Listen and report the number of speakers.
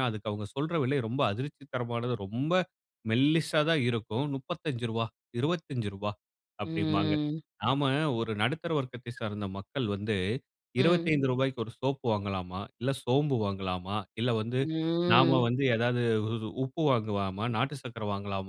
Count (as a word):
two